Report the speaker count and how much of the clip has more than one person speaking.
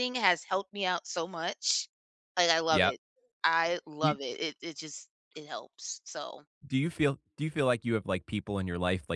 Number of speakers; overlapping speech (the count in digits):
2, about 4%